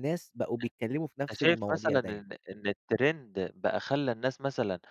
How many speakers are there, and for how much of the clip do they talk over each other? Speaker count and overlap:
2, about 20%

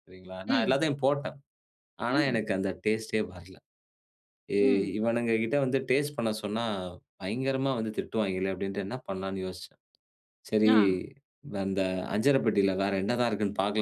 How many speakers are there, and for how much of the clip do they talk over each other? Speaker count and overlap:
2, about 7%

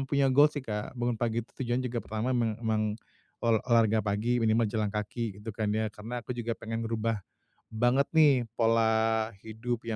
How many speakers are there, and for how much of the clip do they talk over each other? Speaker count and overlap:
1, no overlap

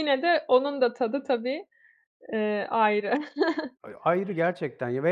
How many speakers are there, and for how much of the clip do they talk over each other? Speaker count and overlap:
2, no overlap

